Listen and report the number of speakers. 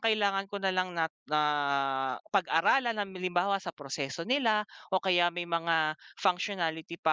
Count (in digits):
1